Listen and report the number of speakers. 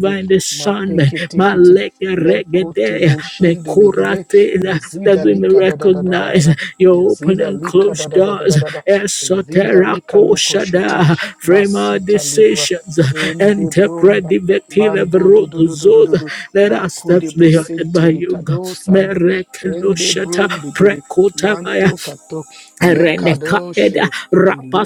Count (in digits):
2